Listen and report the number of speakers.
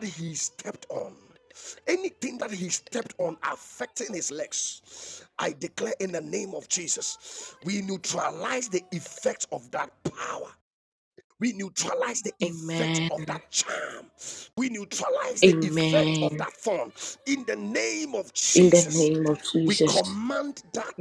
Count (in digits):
2